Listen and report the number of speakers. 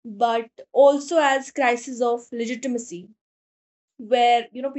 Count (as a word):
one